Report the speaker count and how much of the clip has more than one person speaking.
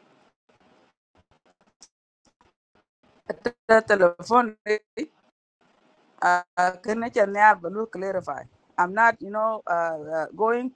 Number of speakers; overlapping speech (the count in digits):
1, no overlap